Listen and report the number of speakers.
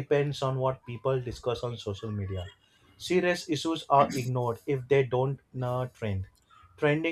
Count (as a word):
one